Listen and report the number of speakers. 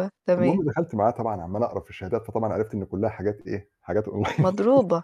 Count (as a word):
two